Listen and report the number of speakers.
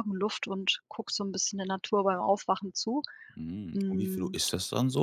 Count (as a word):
two